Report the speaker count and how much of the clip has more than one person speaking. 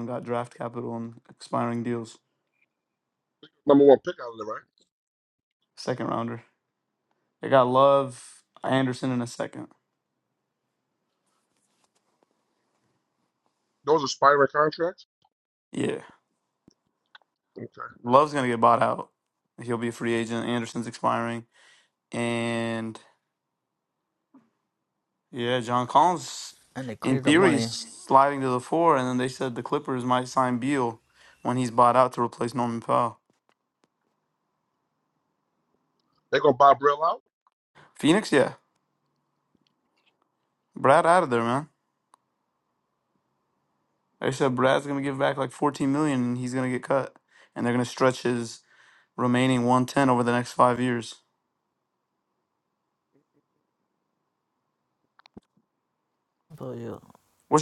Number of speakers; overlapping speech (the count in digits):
3, about 1%